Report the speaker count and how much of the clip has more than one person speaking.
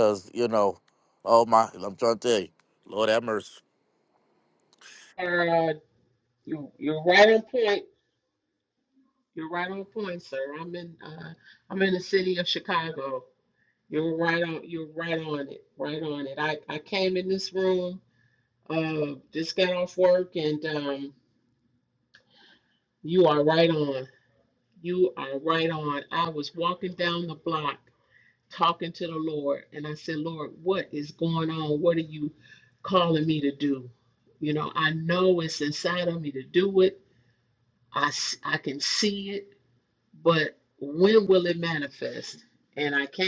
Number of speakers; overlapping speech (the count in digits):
2, no overlap